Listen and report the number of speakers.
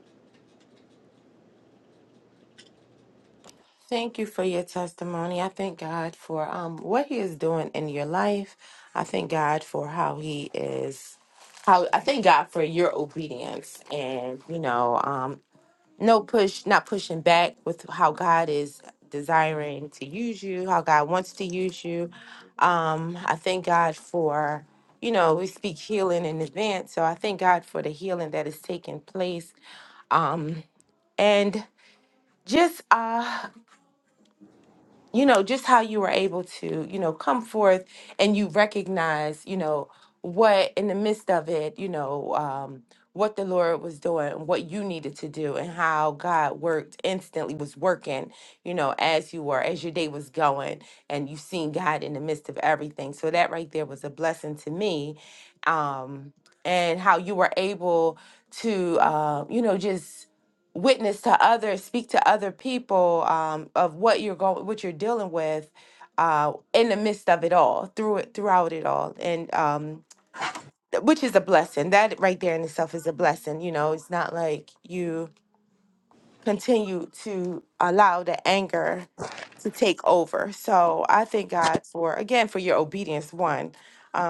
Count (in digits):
1